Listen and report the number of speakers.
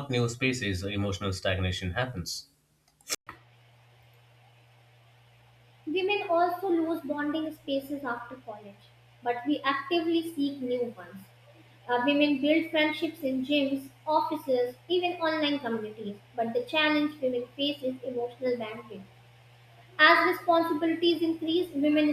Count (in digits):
2